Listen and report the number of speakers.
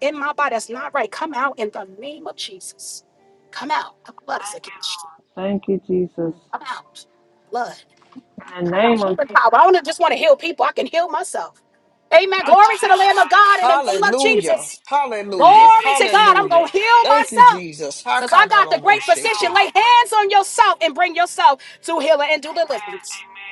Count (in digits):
3